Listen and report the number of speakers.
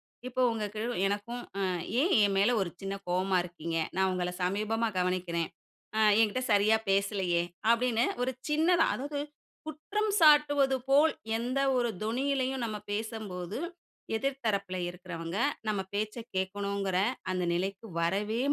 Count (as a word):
one